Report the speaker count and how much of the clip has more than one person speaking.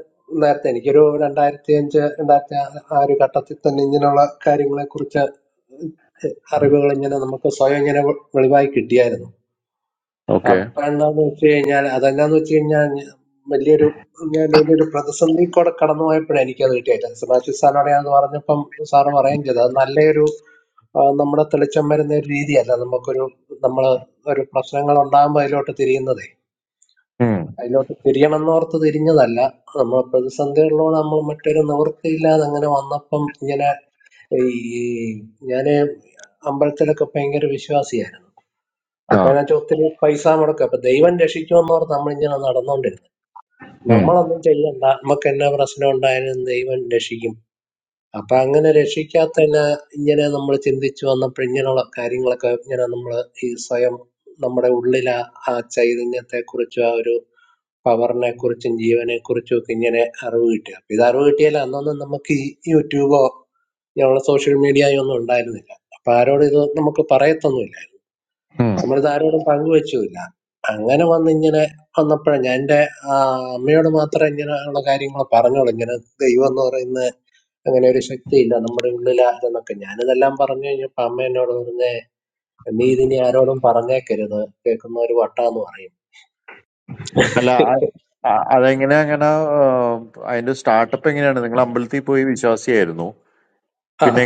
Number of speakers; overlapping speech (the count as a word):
two, about 1%